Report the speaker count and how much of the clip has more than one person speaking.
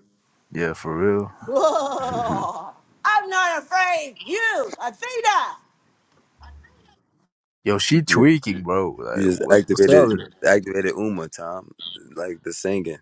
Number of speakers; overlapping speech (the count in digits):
3, about 13%